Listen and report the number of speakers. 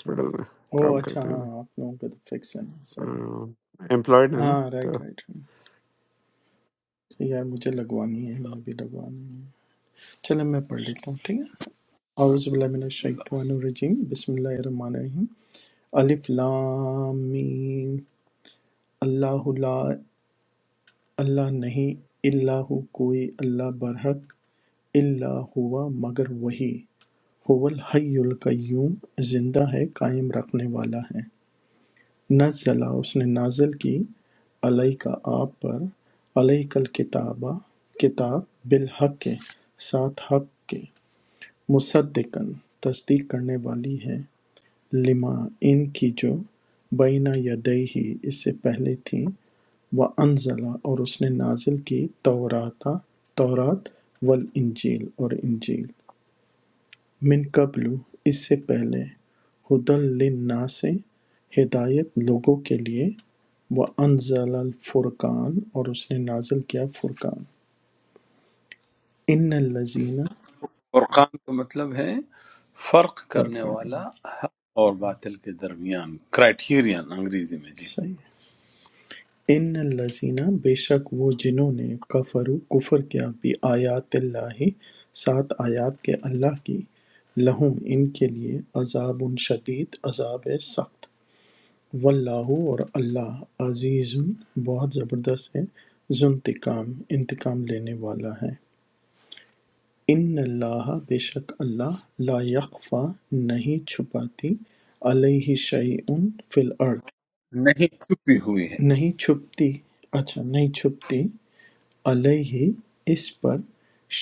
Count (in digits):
3